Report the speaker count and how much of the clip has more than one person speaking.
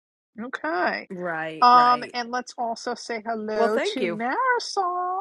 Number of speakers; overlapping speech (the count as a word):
two, about 21%